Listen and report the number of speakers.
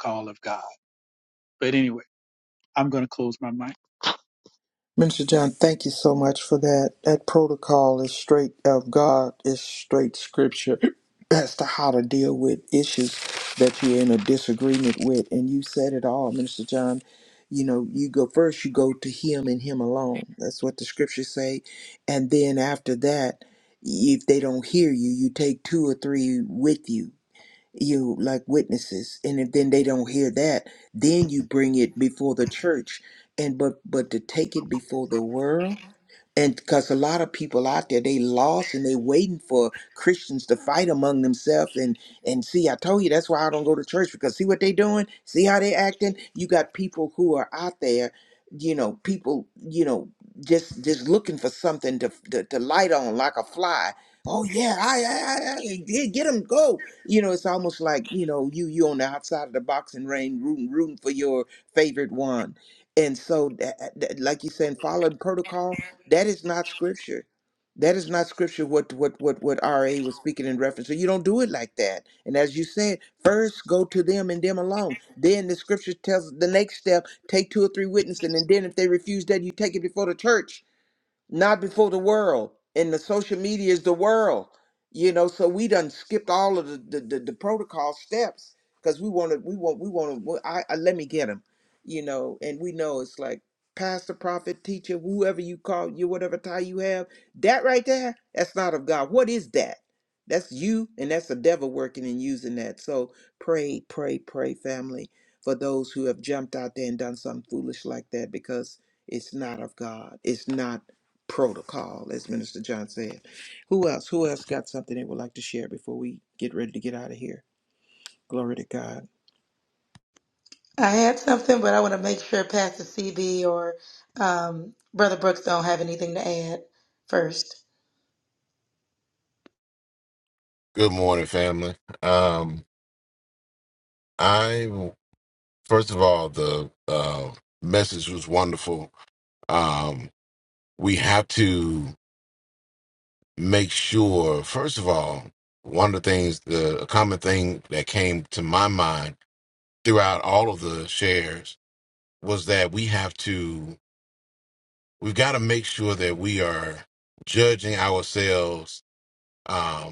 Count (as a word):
four